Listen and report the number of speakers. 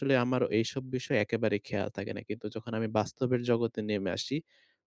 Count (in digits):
1